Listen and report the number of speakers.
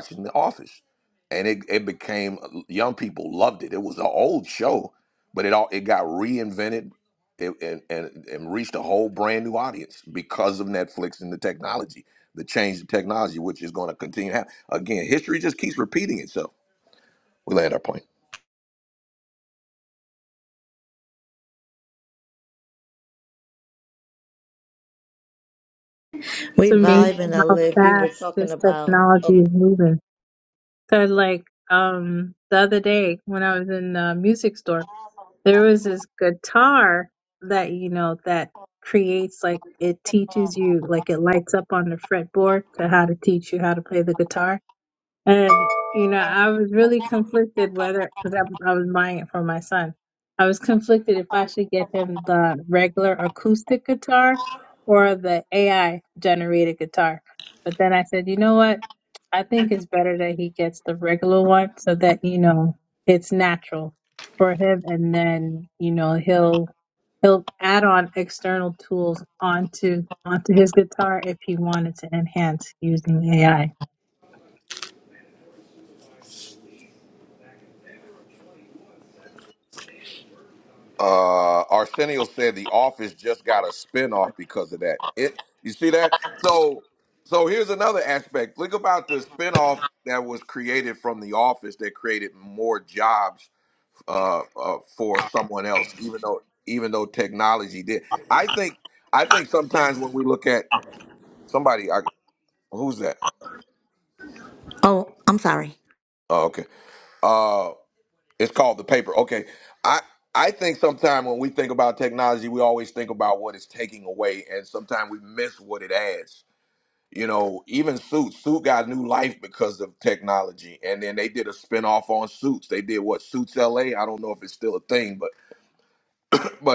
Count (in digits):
3